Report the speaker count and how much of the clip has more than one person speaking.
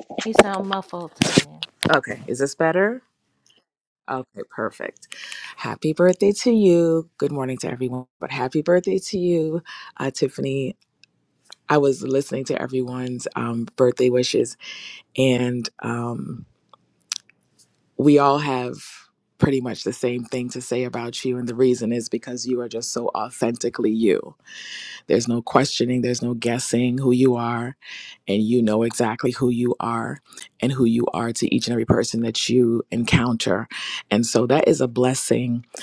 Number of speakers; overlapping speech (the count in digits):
2, no overlap